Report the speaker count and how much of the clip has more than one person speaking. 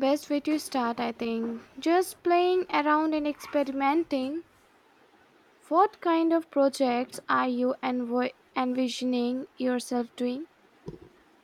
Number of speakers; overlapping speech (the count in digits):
1, no overlap